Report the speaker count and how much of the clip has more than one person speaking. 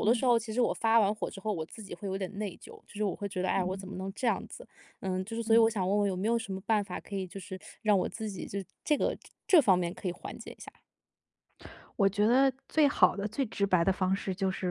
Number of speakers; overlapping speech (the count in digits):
2, about 3%